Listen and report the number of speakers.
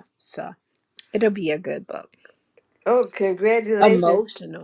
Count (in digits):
2